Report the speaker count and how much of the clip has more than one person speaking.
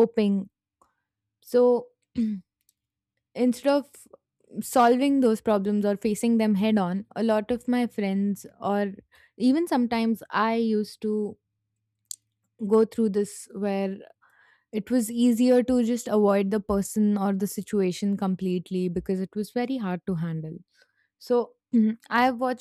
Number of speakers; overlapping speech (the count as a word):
one, no overlap